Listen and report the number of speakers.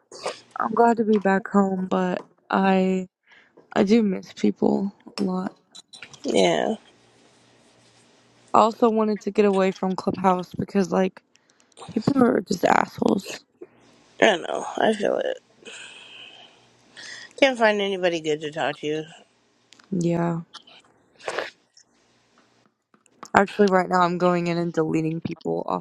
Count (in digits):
2